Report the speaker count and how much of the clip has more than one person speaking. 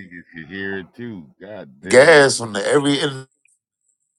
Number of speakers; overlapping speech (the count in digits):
2, about 14%